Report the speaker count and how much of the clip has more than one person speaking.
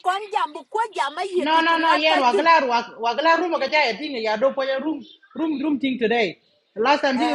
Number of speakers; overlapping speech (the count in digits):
2, about 18%